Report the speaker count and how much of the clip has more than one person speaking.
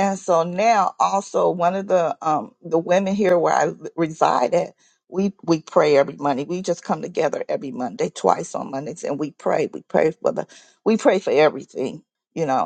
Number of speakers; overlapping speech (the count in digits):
1, no overlap